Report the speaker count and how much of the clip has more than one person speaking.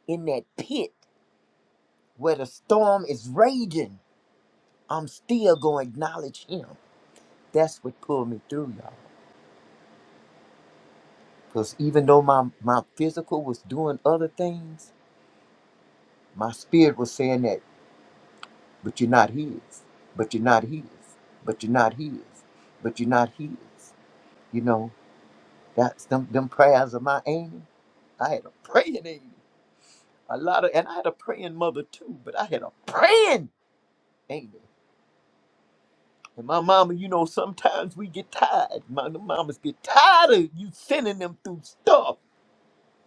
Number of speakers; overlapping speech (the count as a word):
one, no overlap